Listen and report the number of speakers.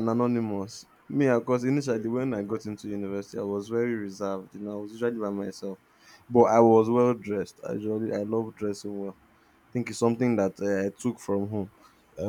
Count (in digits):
1